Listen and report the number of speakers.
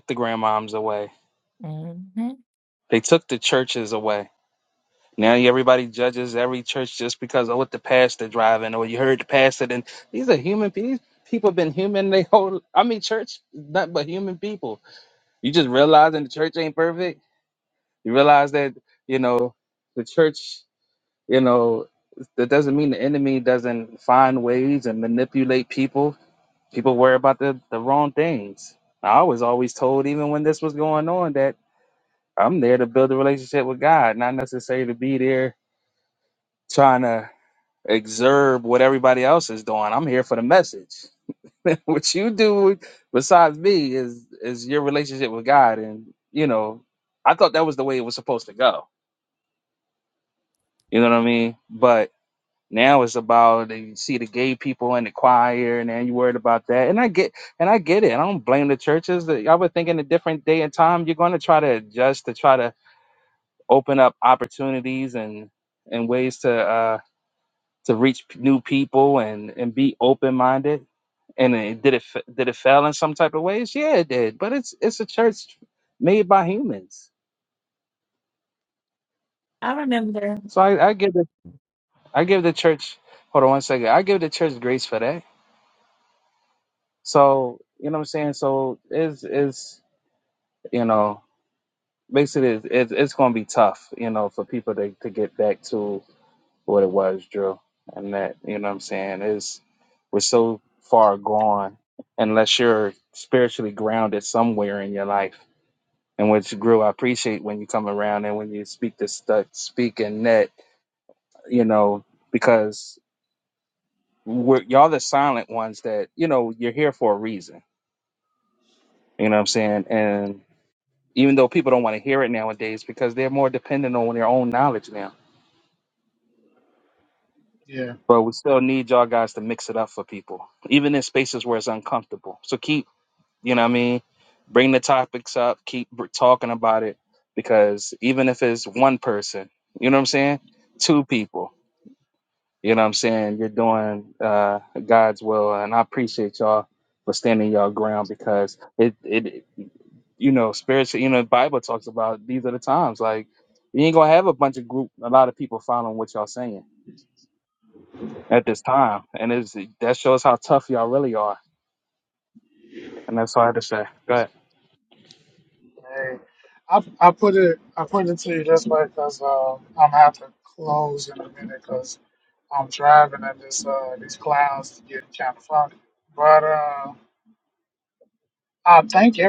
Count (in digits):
3